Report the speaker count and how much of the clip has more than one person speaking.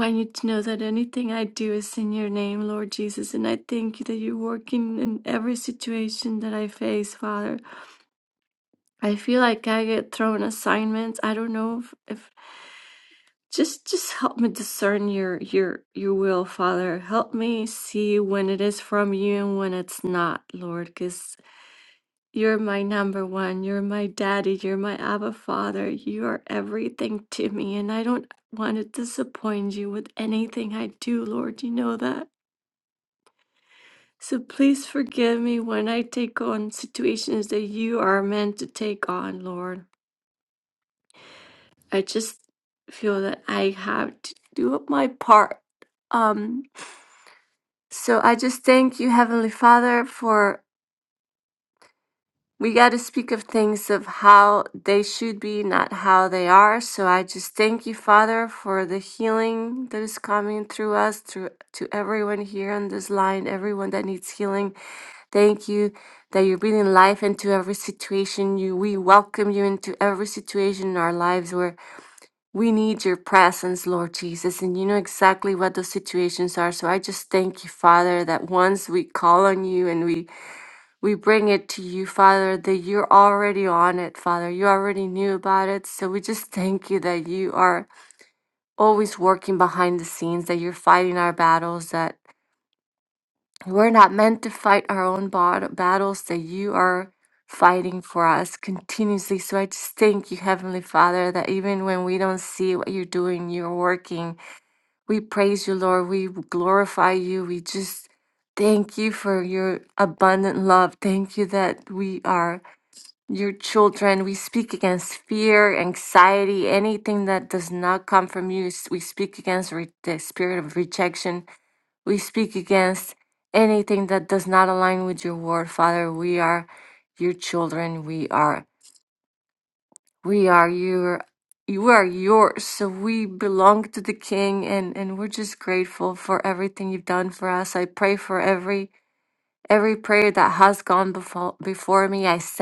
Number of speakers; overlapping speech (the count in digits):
1, no overlap